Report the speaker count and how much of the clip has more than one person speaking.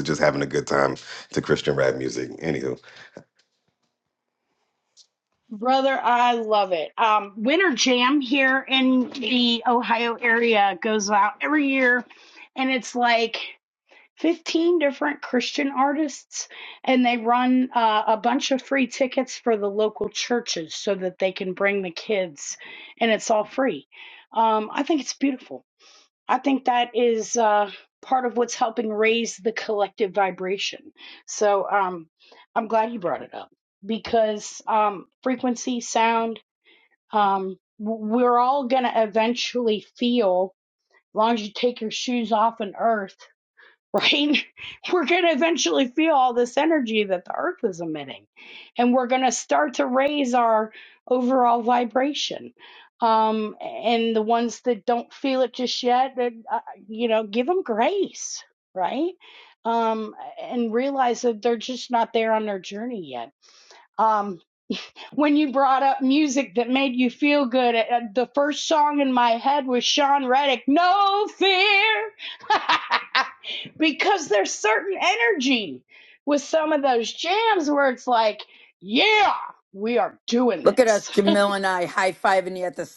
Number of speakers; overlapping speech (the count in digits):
3, about 1%